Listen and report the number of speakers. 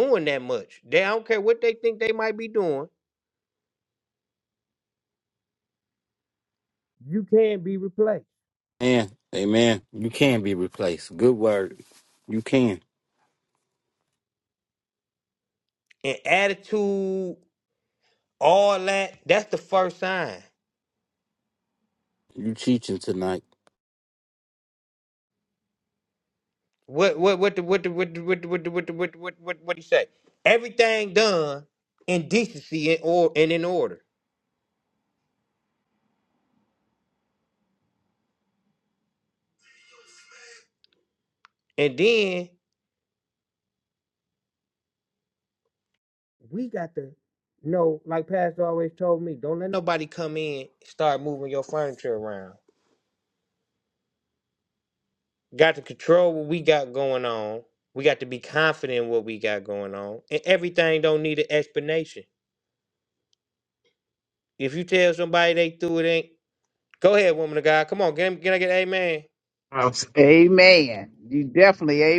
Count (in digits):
3